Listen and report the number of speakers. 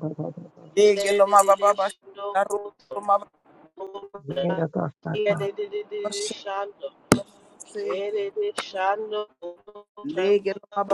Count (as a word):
three